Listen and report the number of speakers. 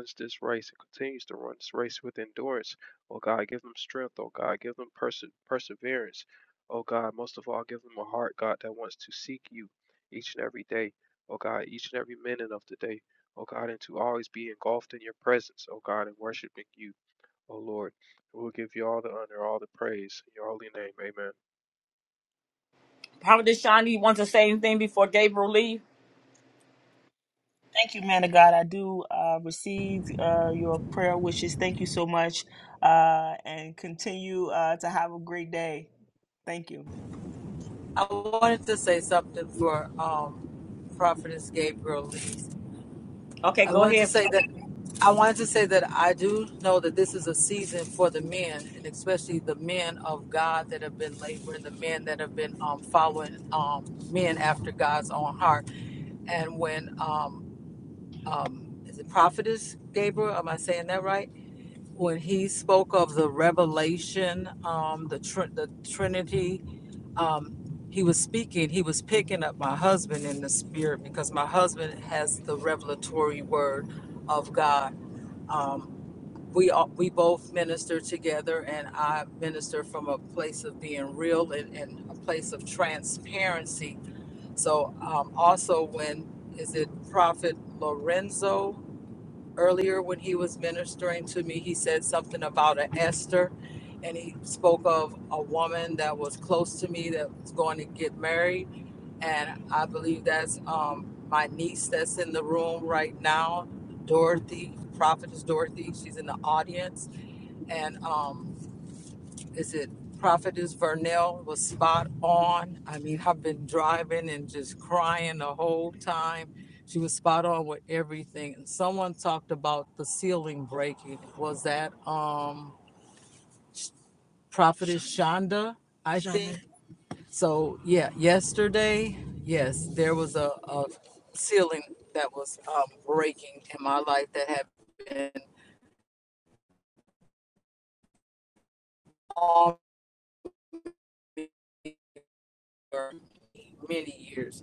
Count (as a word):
four